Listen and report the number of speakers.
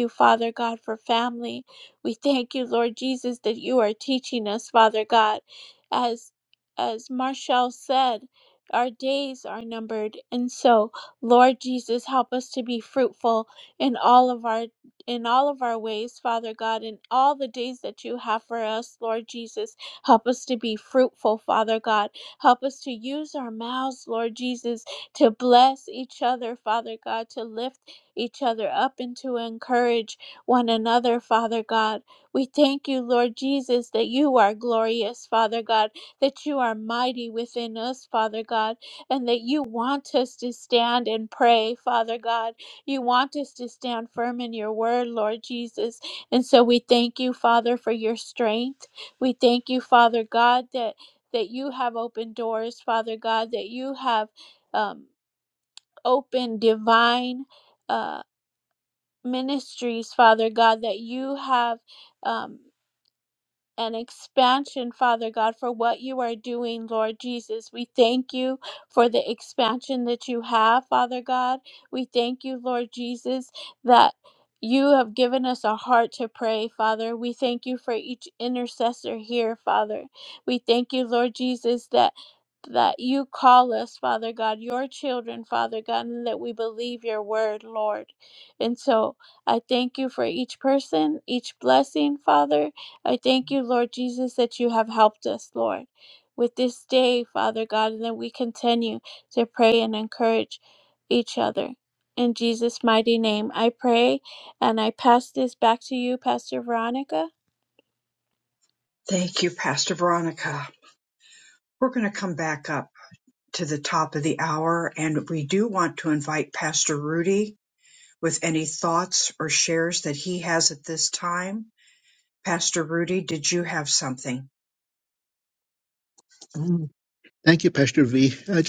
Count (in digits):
3